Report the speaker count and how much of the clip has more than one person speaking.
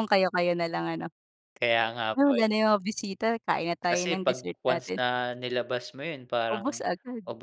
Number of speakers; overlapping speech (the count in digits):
2, about 24%